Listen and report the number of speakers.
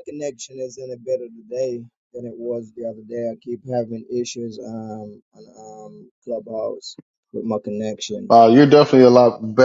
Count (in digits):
2